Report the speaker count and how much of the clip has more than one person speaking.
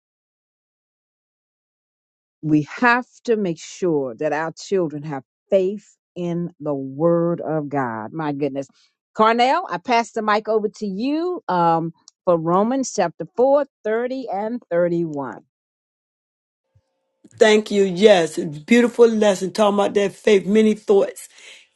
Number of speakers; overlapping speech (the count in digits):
2, no overlap